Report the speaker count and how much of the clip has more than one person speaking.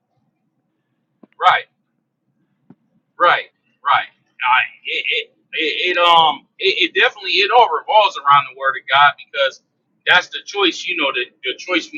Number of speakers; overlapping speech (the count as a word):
one, no overlap